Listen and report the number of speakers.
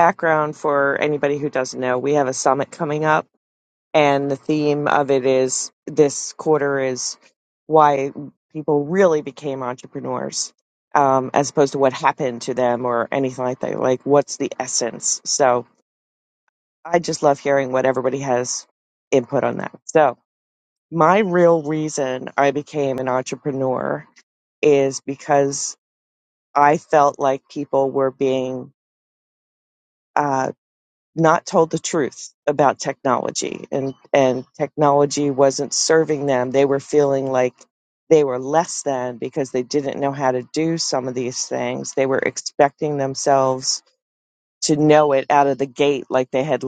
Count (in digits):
1